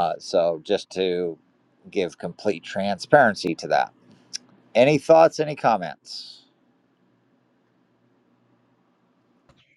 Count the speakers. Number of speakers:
1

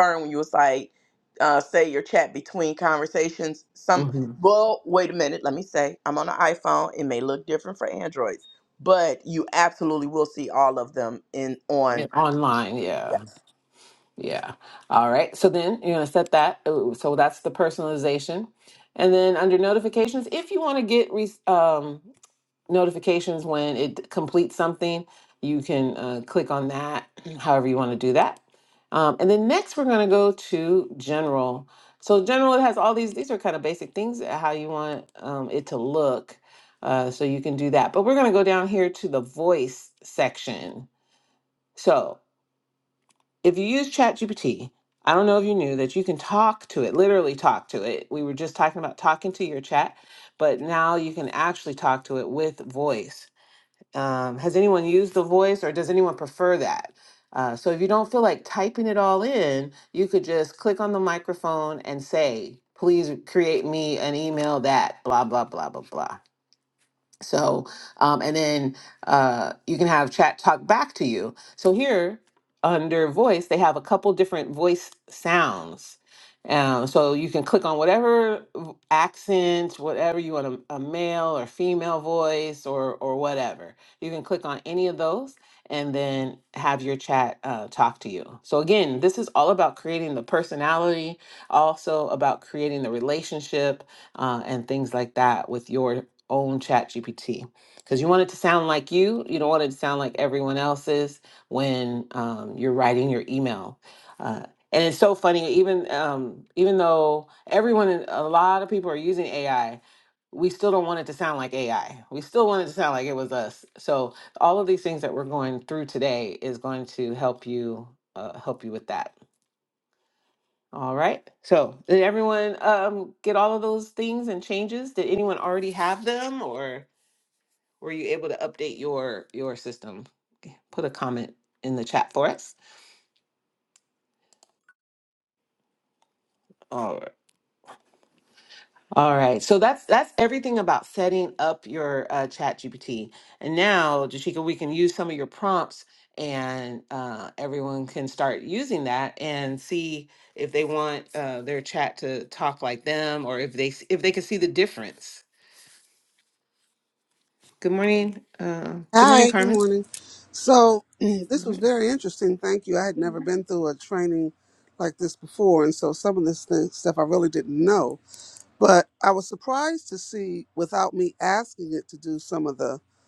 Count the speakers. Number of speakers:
3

